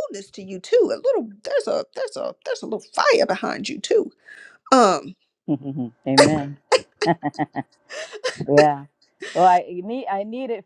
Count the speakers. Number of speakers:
2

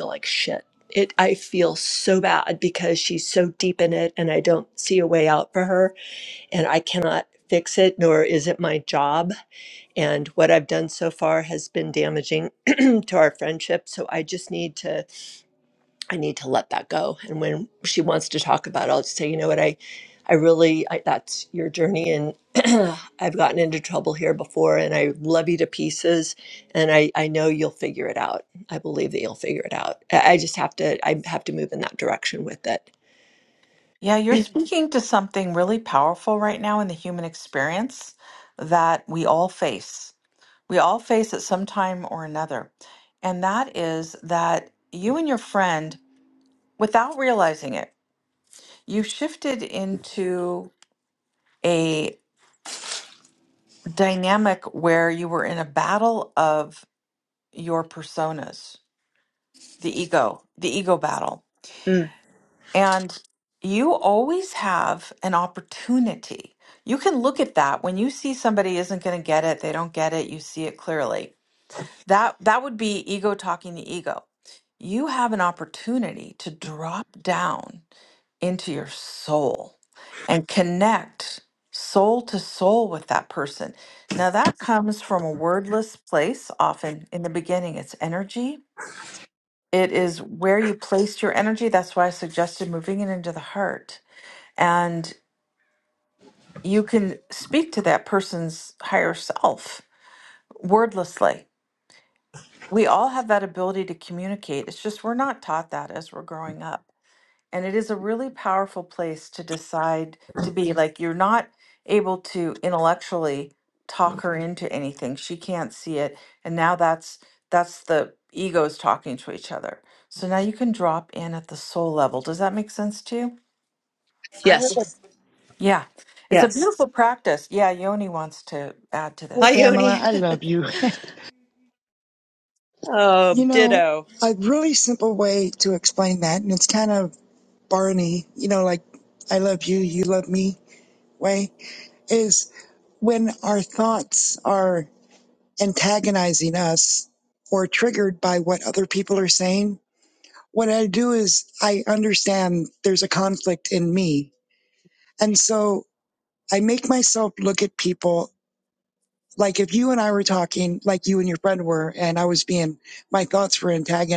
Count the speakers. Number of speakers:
3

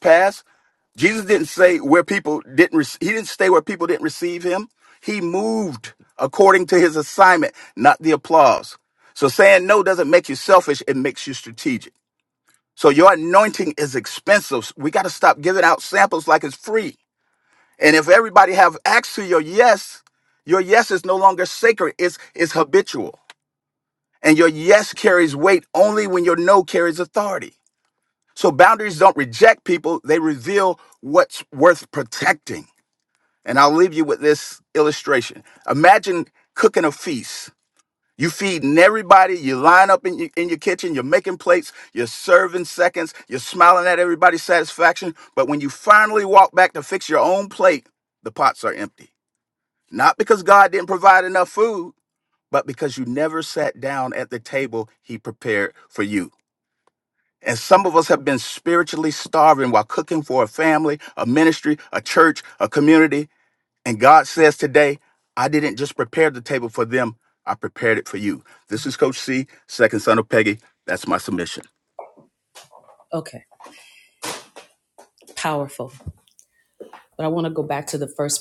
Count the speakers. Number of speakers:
2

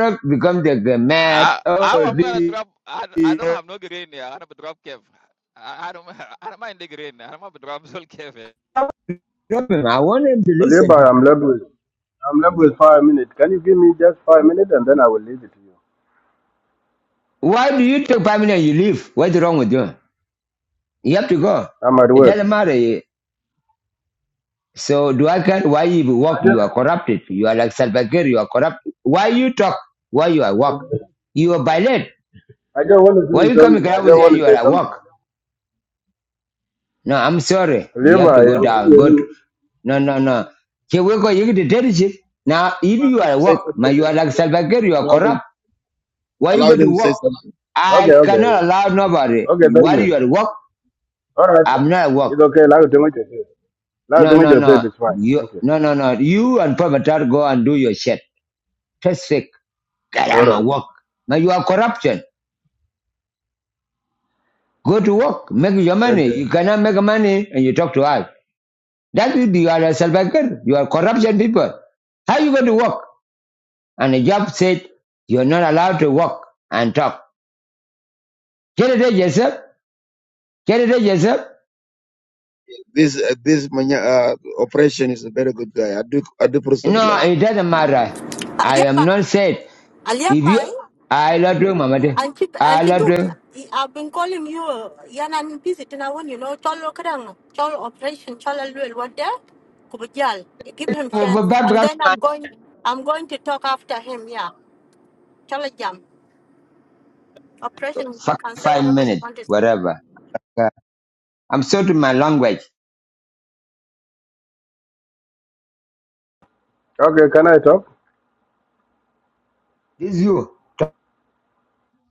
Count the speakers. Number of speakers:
5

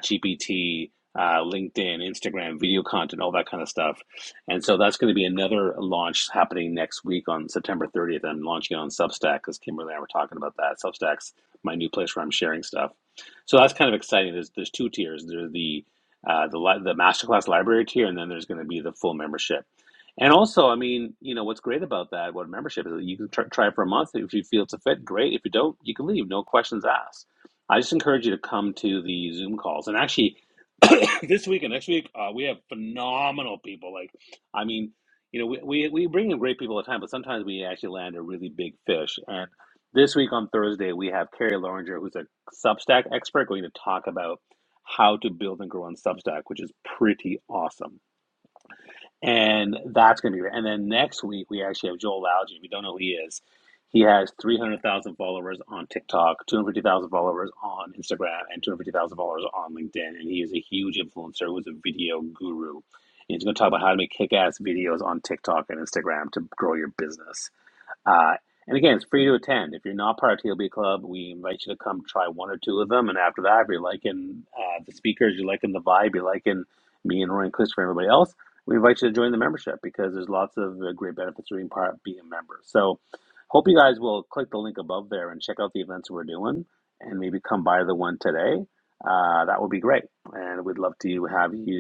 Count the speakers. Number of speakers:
1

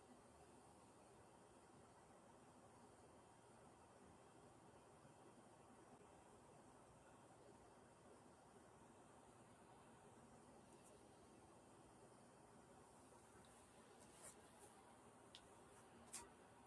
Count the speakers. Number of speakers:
0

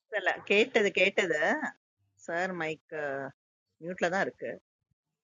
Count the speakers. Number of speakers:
1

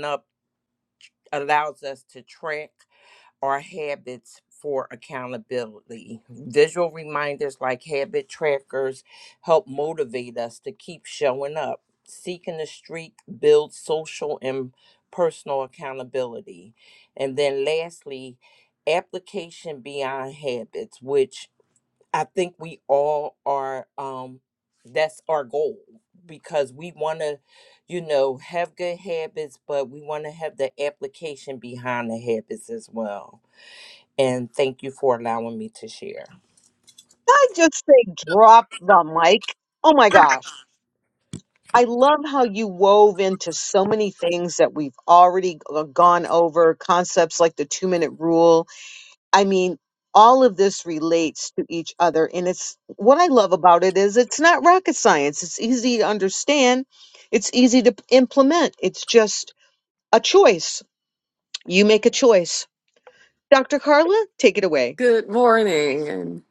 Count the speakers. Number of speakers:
3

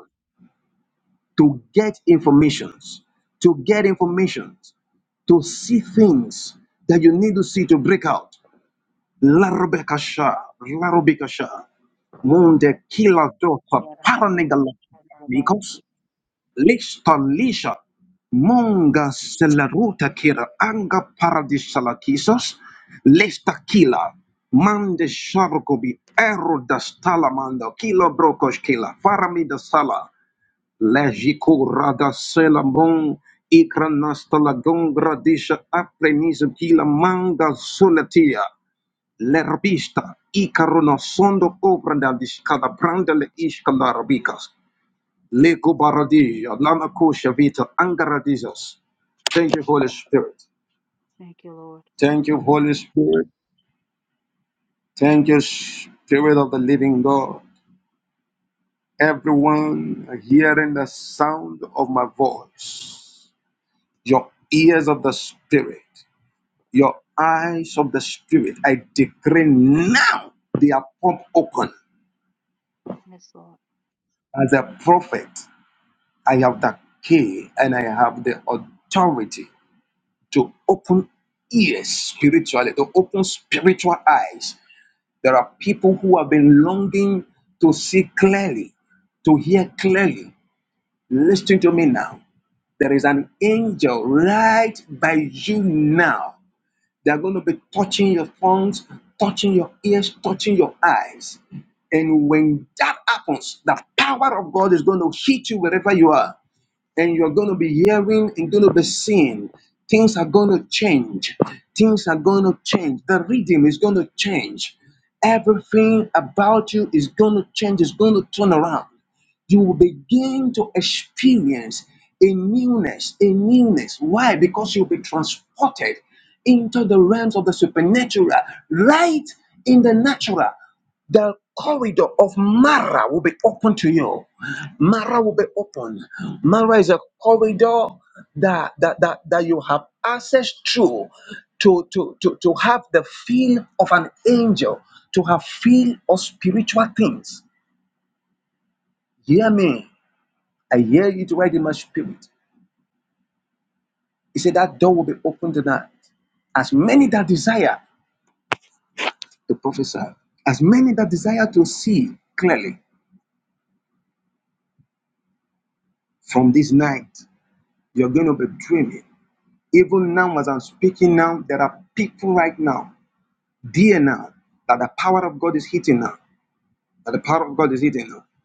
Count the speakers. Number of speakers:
2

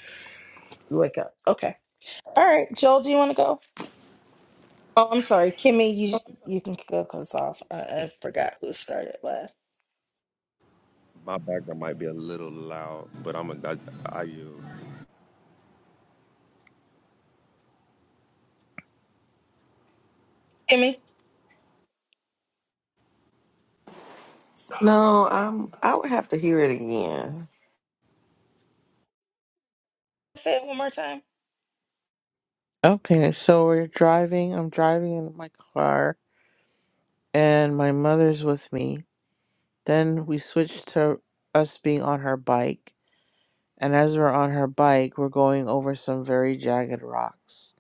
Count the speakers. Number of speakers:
4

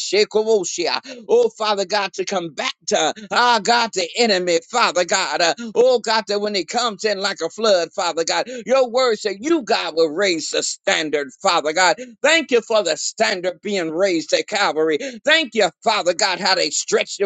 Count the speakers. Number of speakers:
1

